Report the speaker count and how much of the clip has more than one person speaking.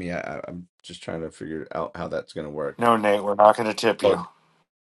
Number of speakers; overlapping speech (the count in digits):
2, about 4%